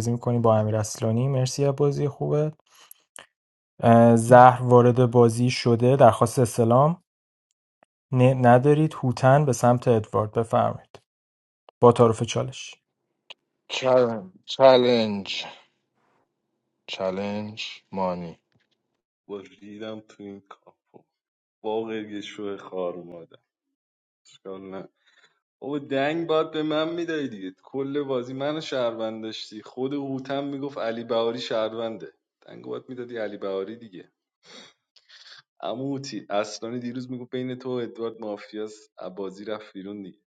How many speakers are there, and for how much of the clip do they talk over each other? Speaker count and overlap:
3, no overlap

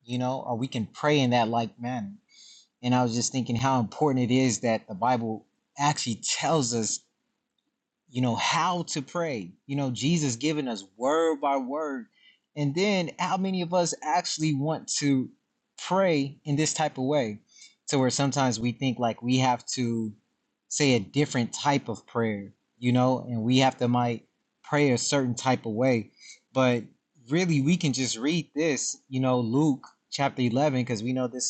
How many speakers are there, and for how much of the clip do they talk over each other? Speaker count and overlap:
1, no overlap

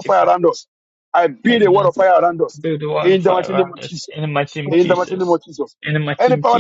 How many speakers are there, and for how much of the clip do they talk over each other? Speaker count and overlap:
2, about 40%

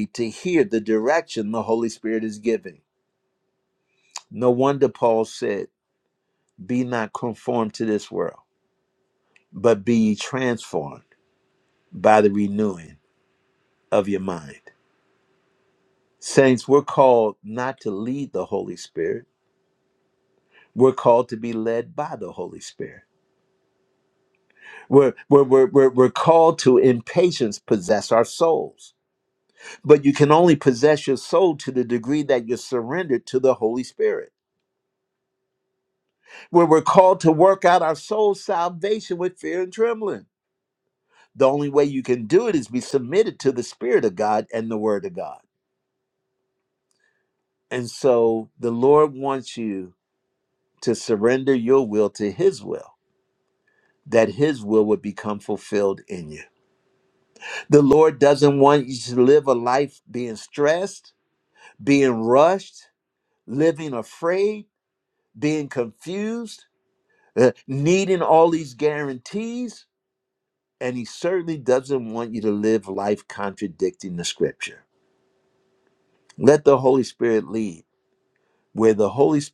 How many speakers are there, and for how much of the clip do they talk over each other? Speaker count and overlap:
1, no overlap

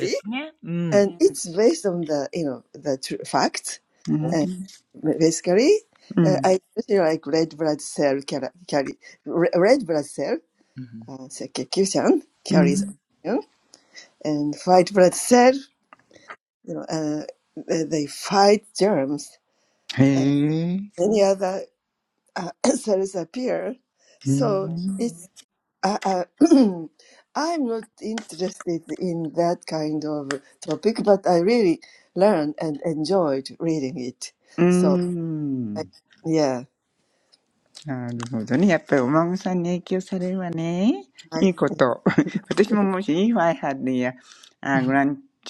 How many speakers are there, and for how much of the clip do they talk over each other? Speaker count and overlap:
3, about 4%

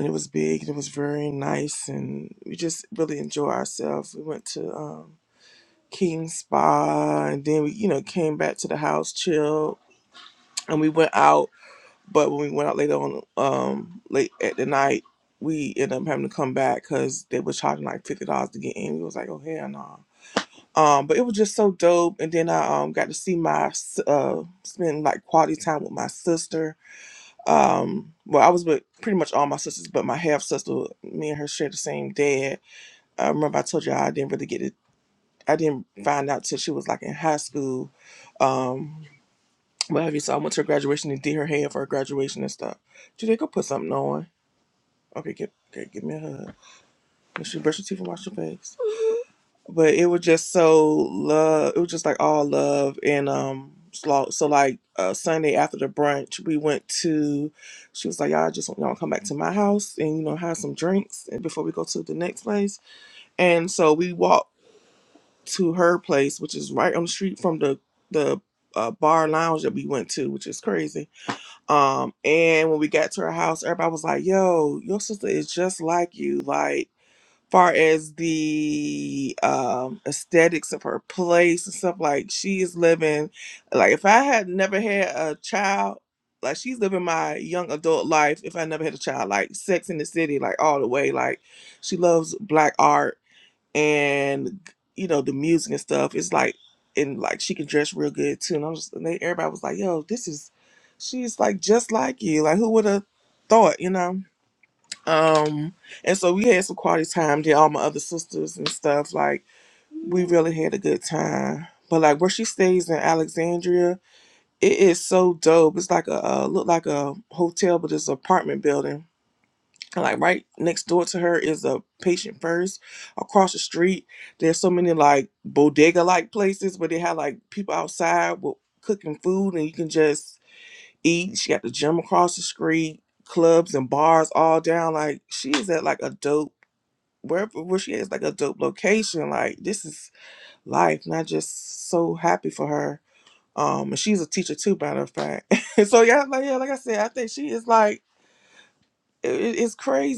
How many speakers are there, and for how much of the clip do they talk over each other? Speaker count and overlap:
1, no overlap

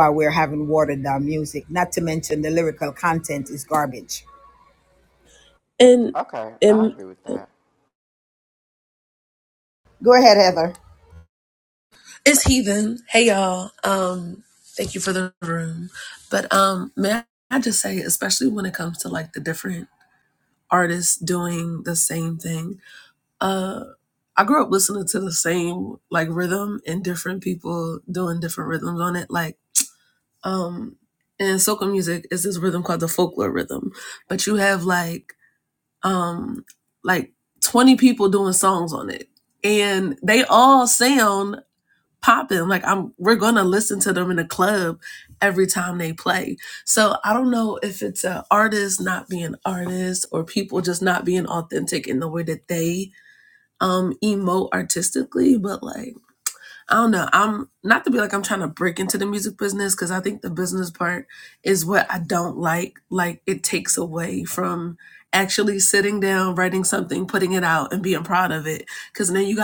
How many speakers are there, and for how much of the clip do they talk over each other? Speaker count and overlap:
3, under 1%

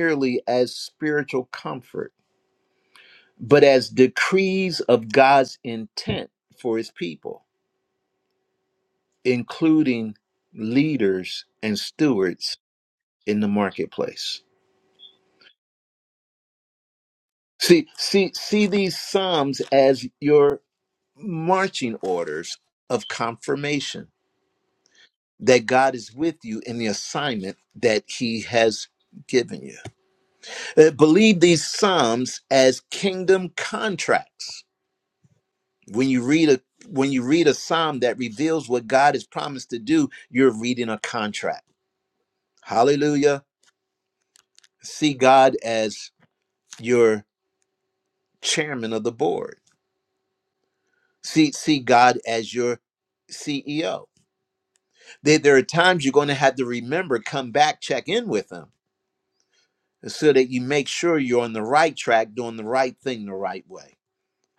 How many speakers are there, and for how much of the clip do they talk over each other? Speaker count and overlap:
1, no overlap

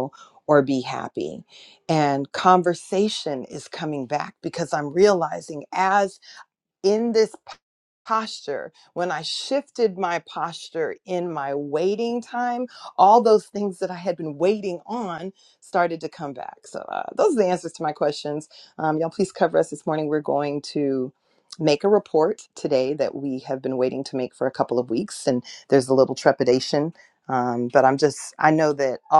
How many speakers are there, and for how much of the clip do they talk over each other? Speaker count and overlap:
1, no overlap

